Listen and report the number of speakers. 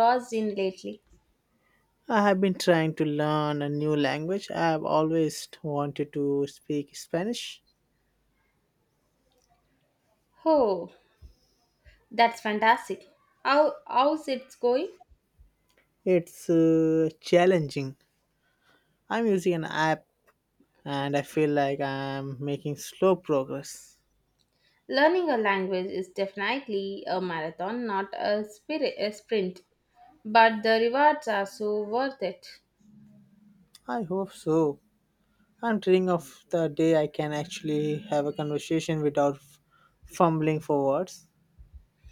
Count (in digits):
2